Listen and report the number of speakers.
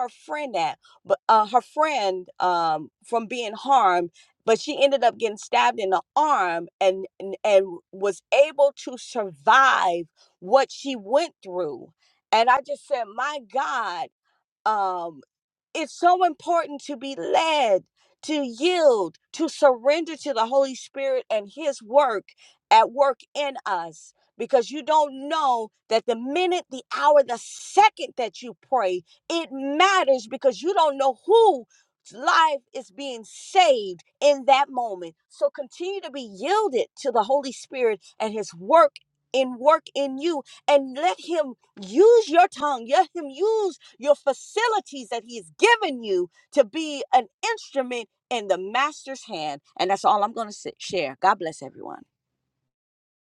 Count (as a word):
one